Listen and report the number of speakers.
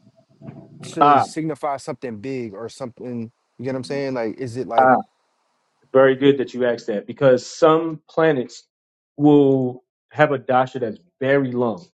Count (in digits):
2